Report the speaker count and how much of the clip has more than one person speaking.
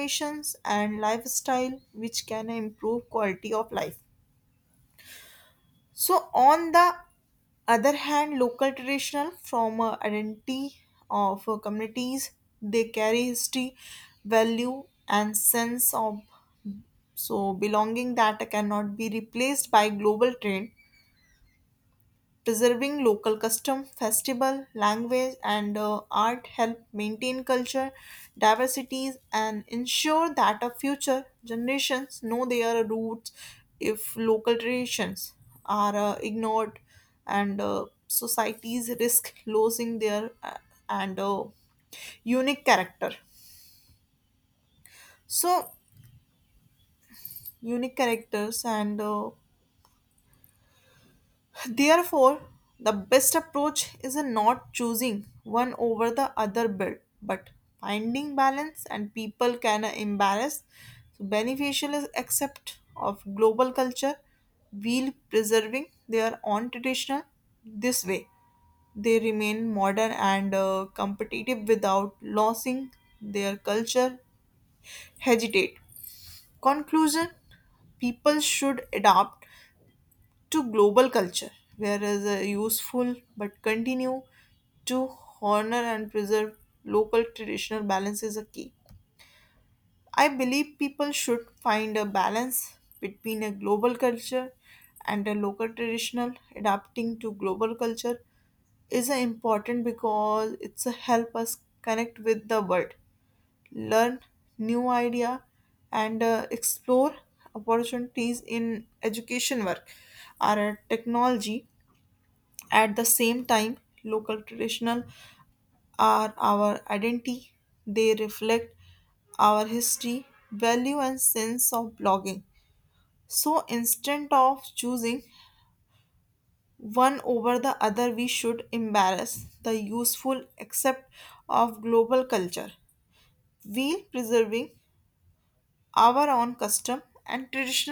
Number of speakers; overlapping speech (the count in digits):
1, no overlap